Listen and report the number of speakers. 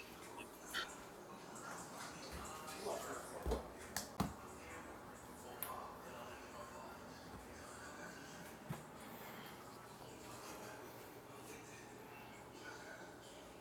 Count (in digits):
0